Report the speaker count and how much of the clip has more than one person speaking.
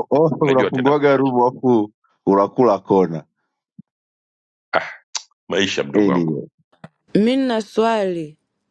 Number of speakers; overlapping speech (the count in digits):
3, about 14%